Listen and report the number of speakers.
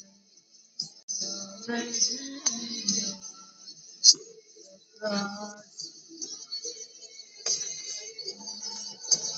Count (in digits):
0